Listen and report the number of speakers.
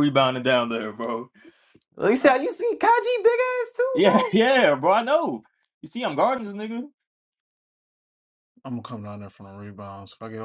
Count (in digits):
3